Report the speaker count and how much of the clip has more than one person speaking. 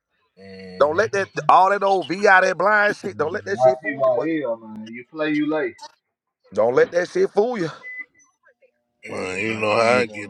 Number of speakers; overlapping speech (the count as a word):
three, about 23%